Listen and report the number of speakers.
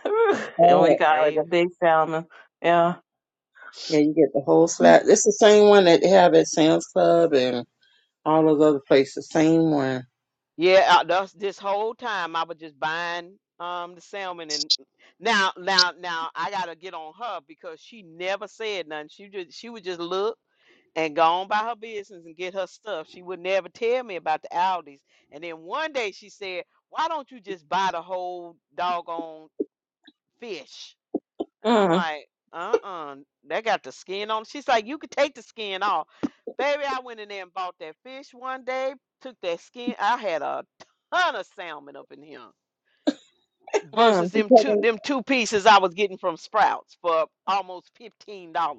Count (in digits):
3